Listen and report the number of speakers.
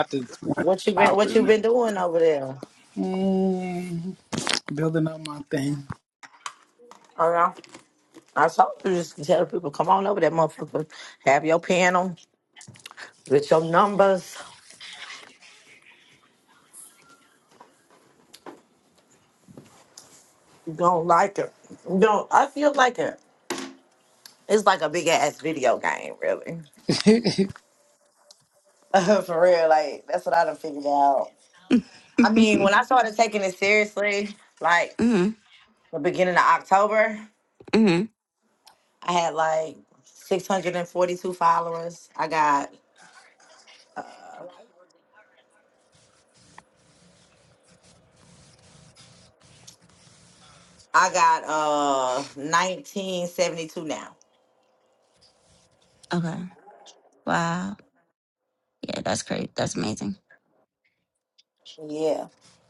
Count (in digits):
3